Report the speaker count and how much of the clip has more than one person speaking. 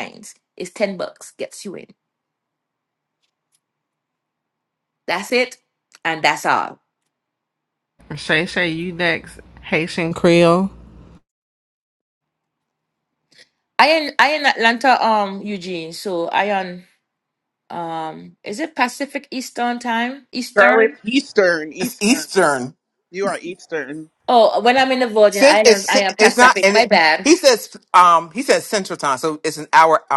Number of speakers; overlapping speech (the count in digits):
4, about 8%